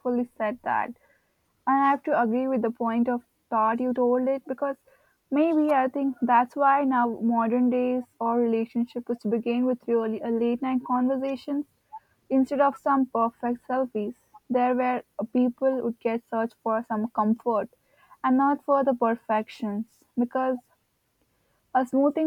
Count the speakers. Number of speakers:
1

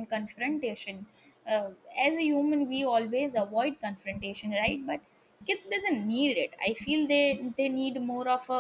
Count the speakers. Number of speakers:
1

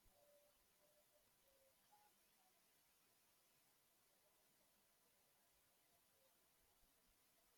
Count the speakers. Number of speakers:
0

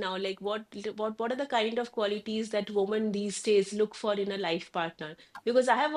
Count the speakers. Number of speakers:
1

